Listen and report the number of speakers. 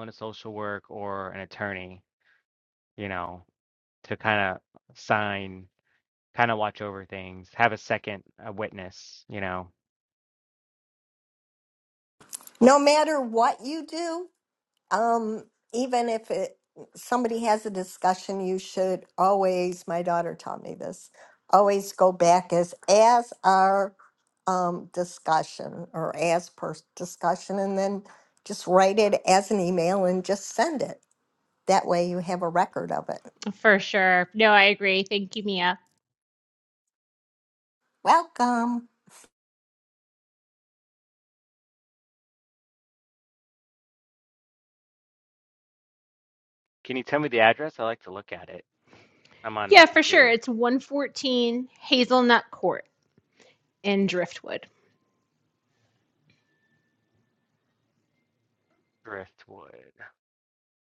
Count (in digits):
3